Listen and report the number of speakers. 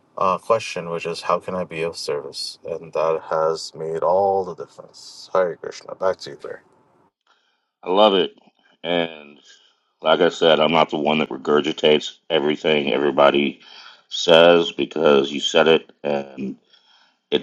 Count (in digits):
2